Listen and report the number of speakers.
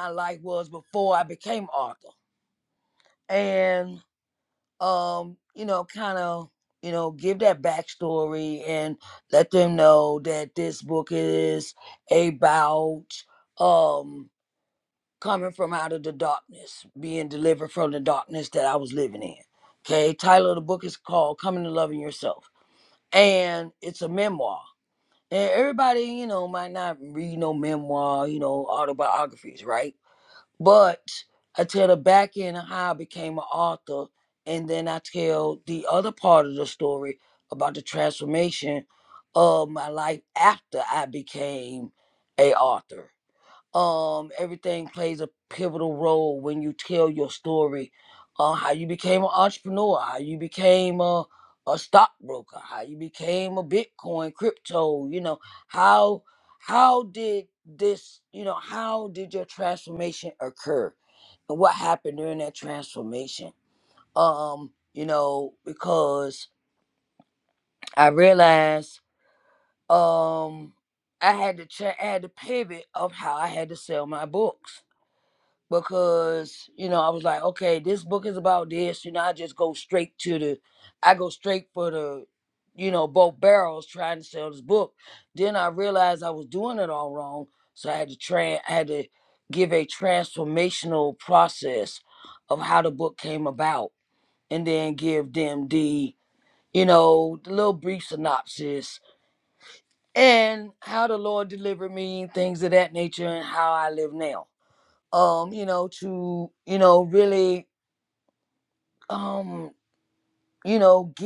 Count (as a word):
one